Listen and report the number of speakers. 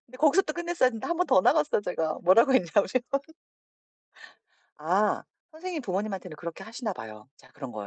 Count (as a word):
one